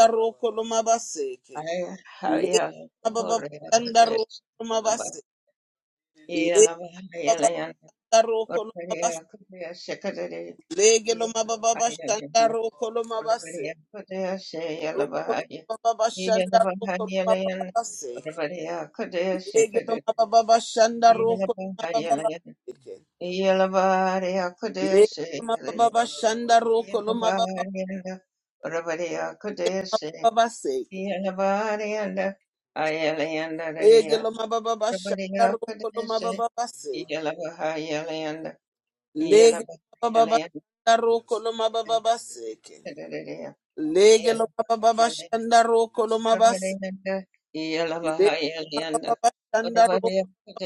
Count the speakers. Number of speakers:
two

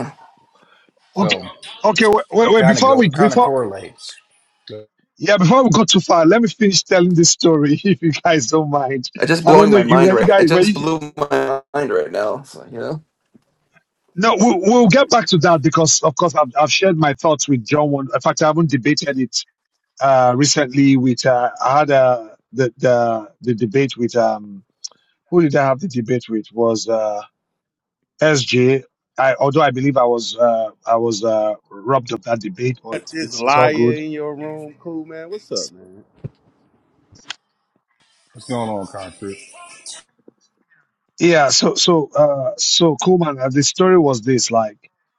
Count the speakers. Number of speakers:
four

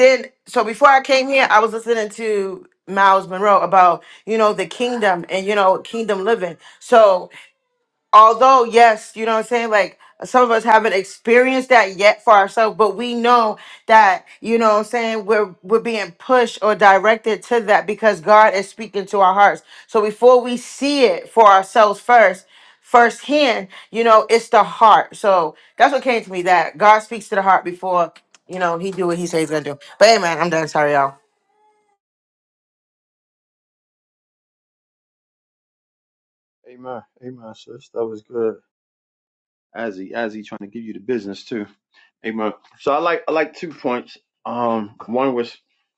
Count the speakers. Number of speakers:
two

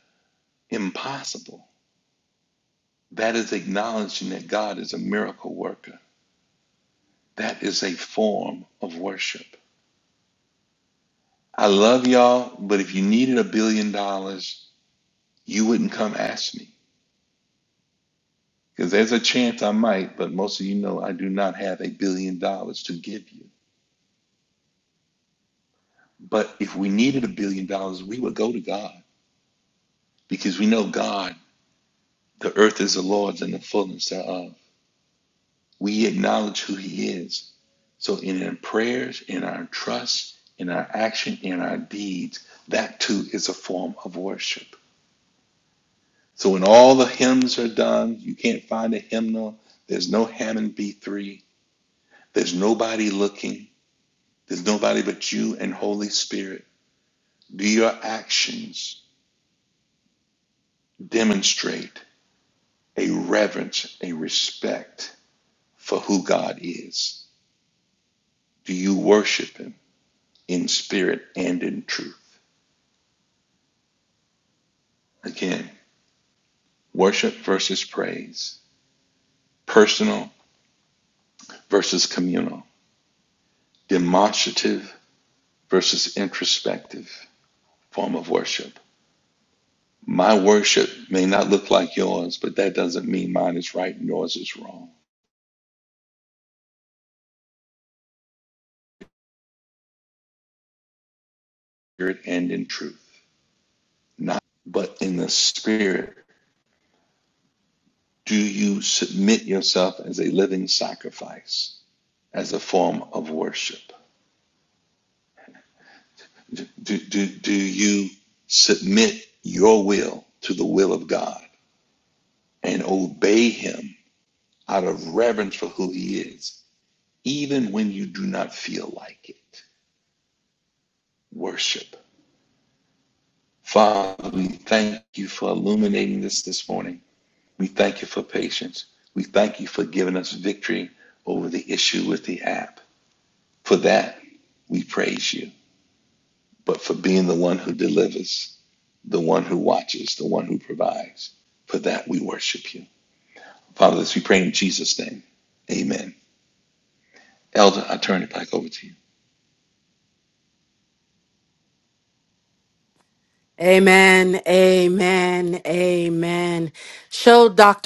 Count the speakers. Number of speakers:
two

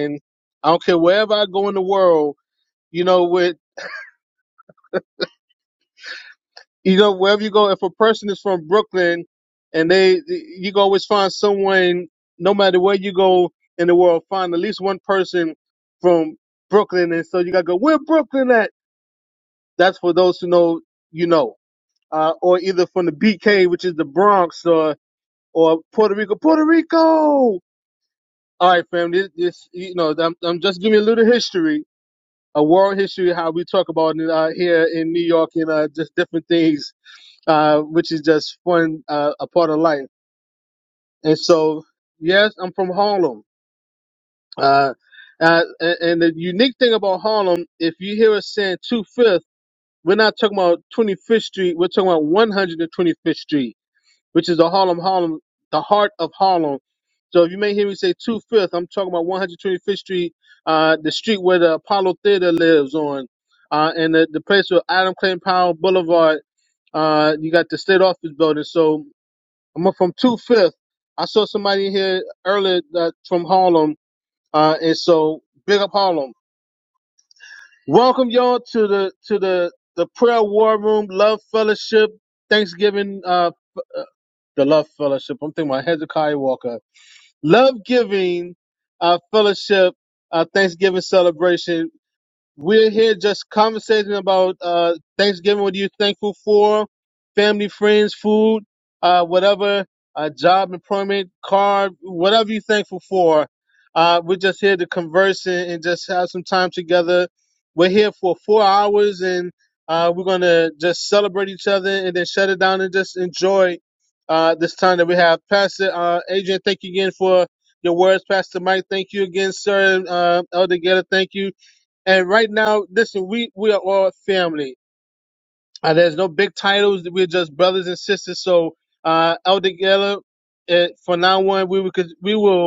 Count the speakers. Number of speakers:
one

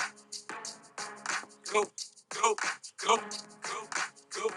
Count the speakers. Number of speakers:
zero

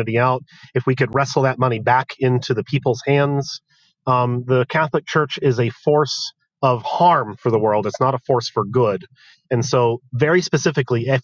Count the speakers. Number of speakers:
one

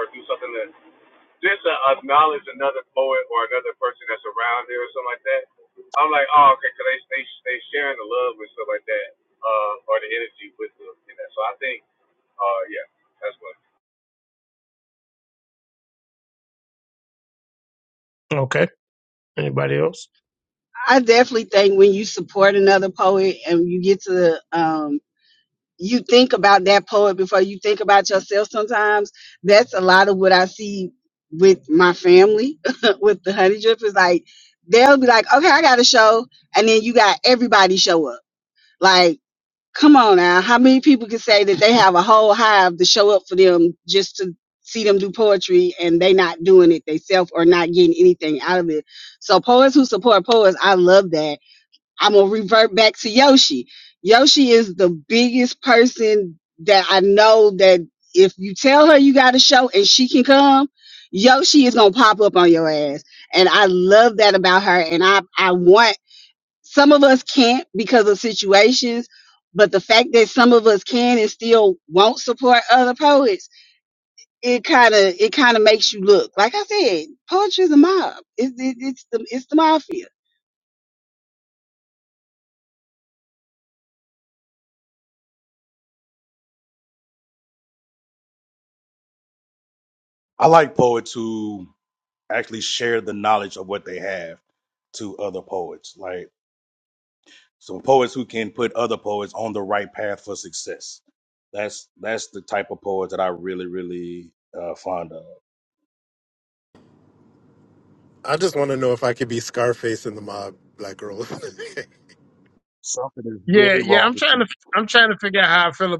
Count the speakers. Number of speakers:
five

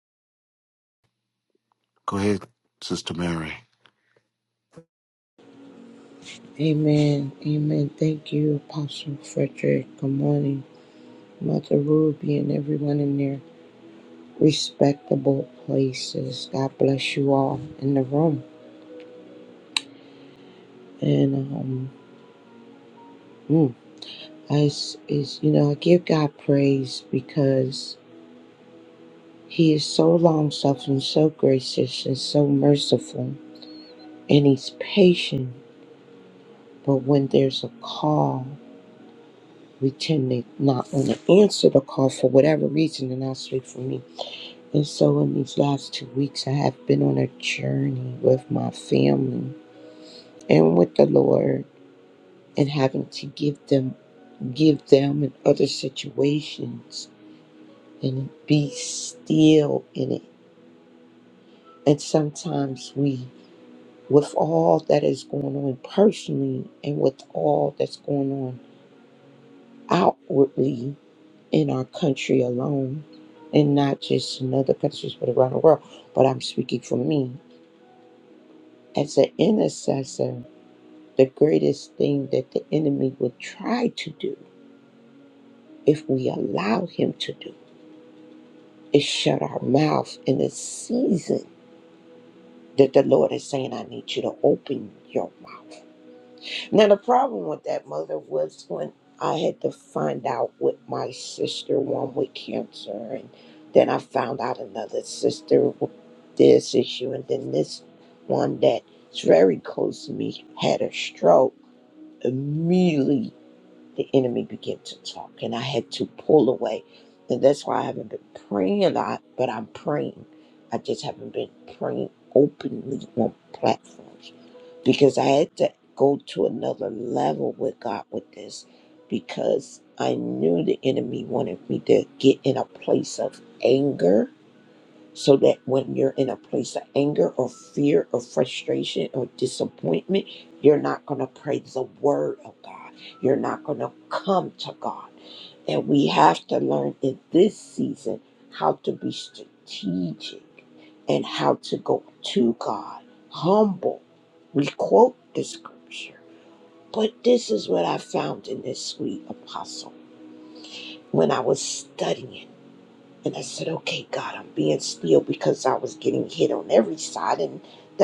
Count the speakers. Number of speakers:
two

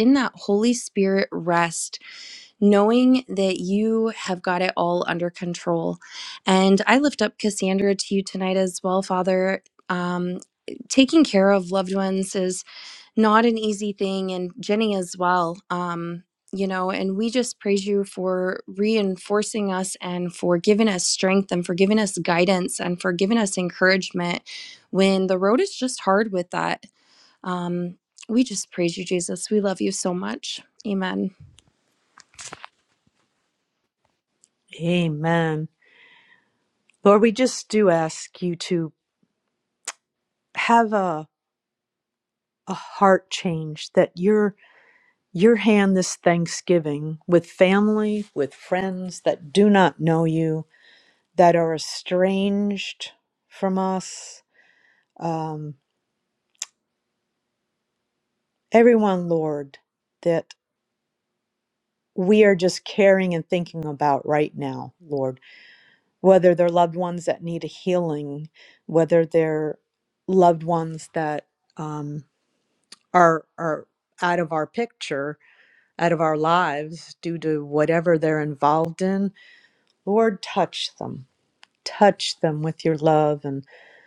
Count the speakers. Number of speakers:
two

